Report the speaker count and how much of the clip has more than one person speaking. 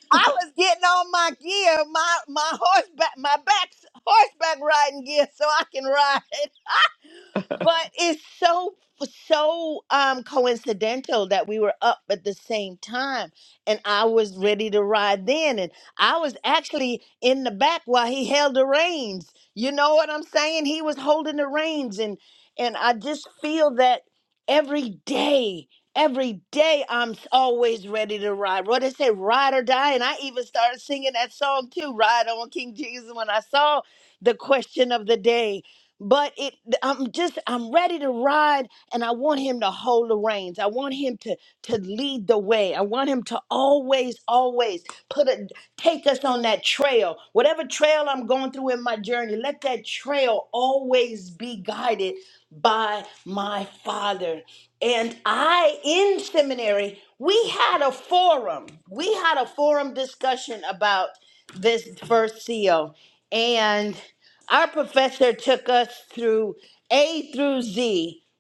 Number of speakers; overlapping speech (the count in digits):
1, no overlap